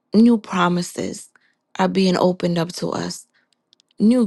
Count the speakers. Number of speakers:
one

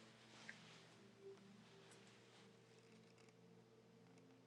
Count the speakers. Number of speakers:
zero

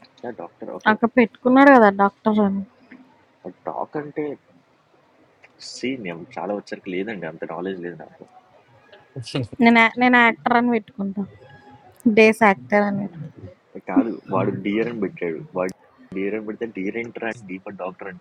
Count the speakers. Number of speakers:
two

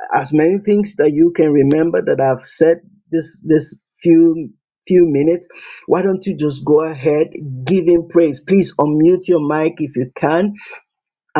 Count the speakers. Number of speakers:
one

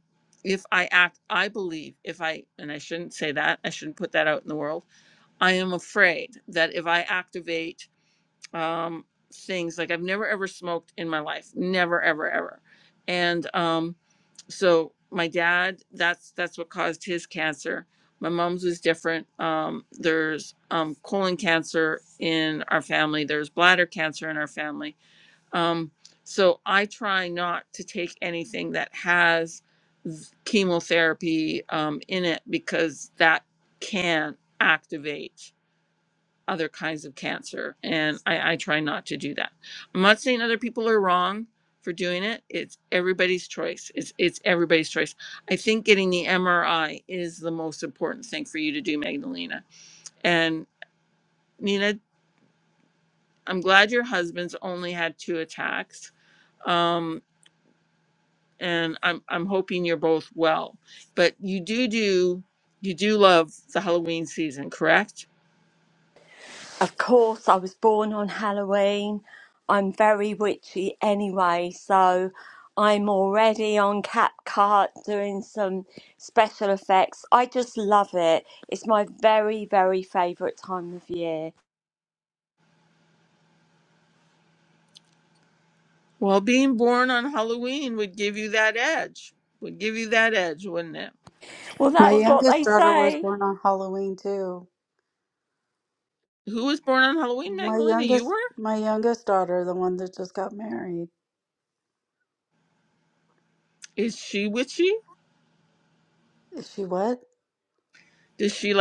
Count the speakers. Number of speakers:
three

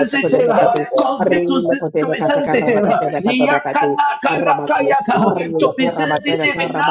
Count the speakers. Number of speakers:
two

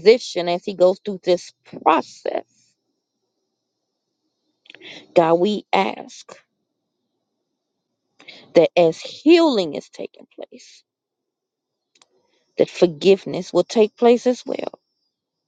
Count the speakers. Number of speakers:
one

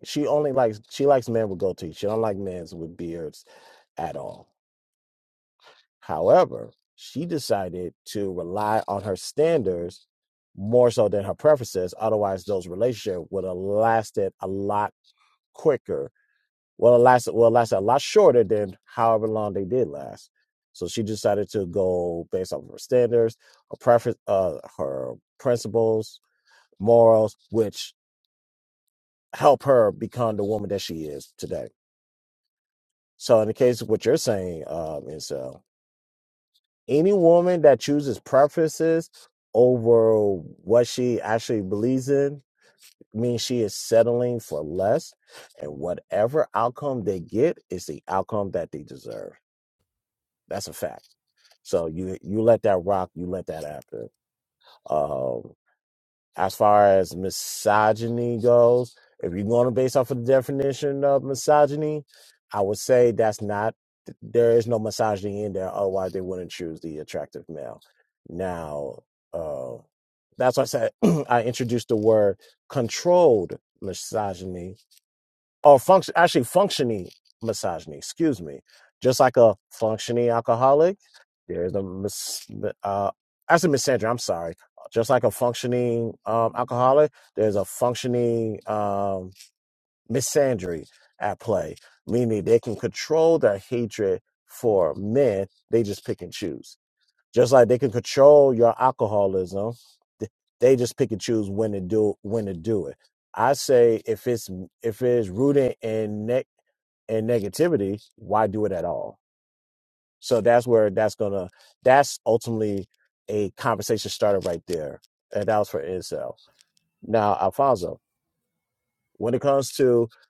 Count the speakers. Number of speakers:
one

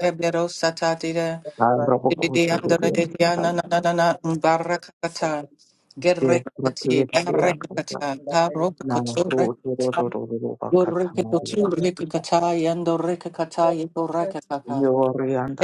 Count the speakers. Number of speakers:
two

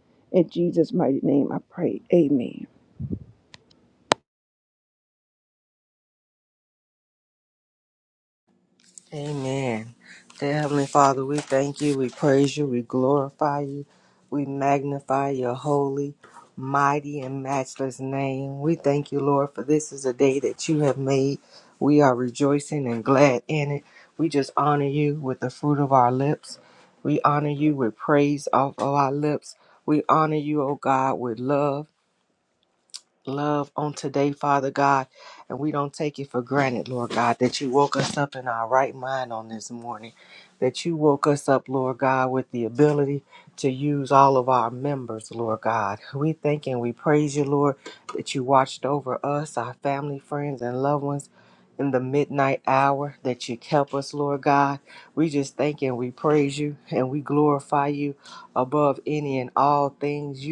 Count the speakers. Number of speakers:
two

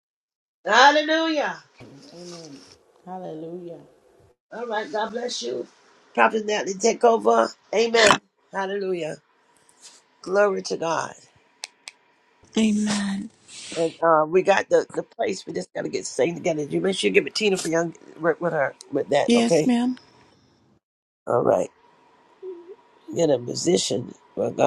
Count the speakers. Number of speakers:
three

